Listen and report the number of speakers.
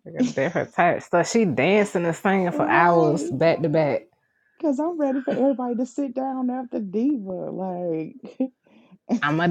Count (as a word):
two